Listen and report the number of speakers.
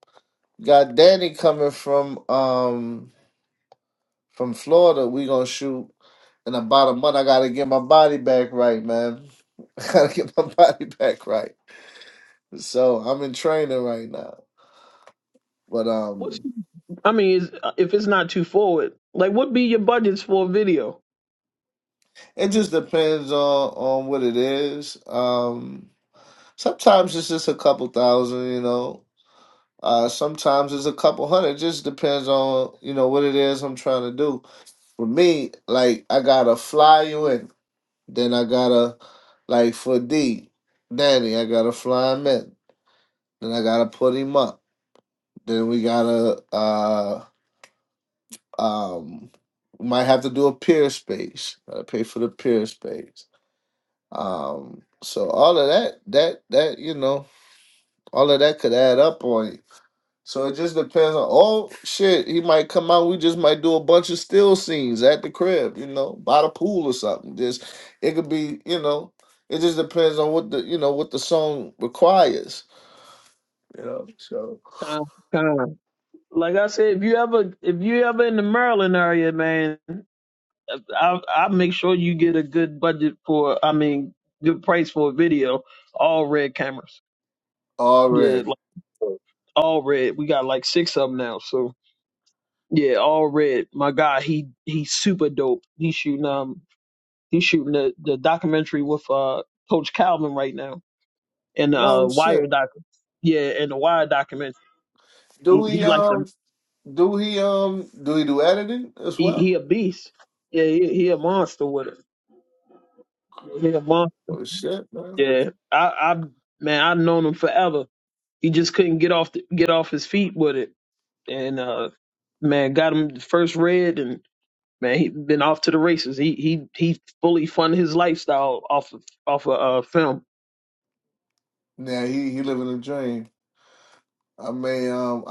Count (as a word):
two